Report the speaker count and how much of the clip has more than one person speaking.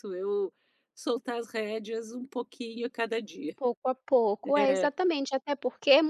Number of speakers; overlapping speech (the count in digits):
2, about 6%